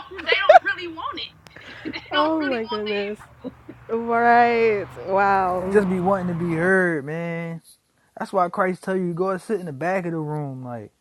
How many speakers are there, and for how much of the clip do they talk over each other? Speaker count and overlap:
3, about 10%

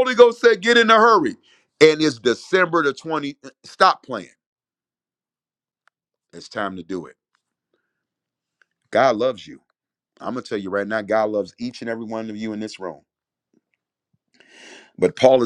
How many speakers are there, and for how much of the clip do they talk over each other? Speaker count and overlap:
1, no overlap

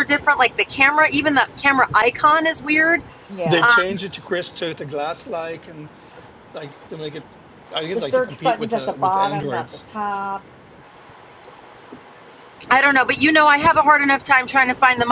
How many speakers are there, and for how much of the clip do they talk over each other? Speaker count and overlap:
3, about 15%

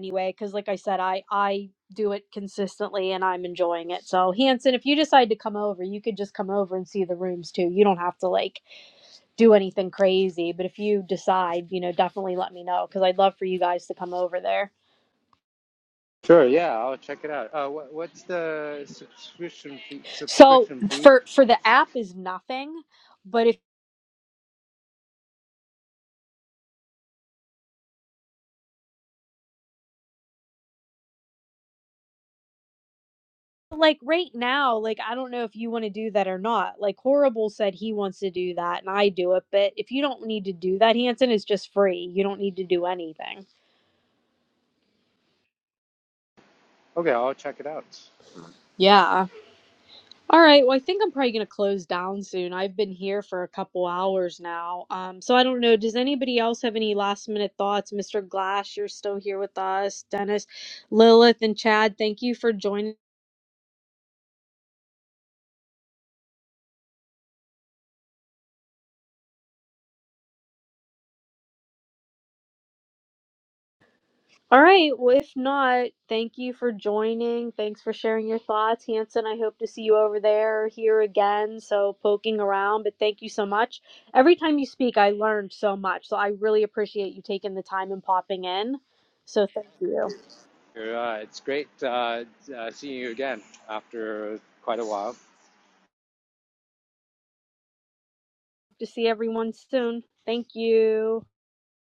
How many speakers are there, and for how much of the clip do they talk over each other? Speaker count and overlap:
2, about 1%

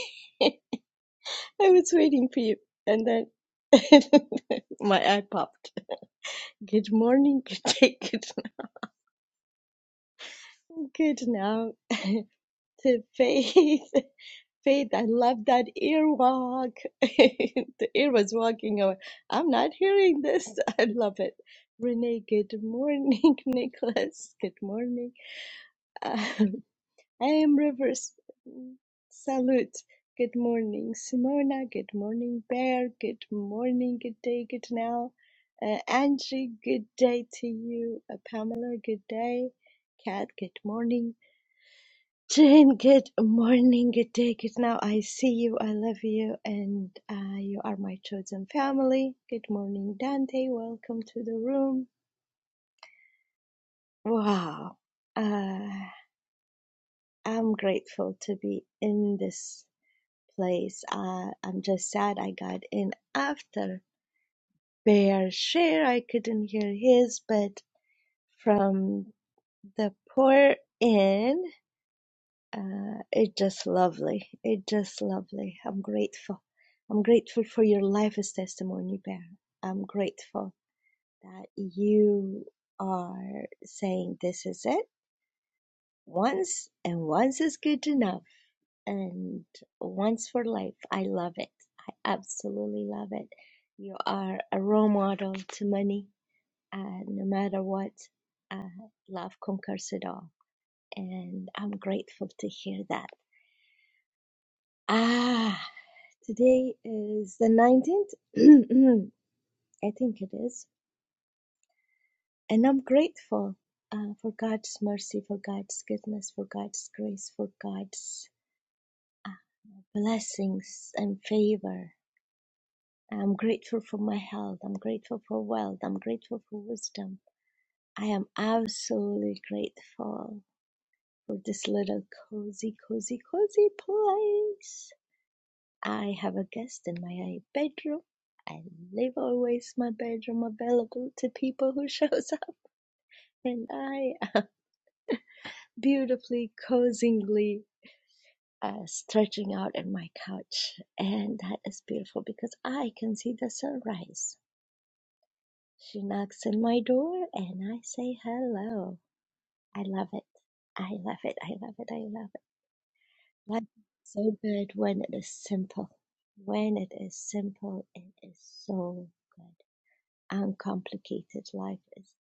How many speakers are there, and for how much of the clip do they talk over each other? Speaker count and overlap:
1, no overlap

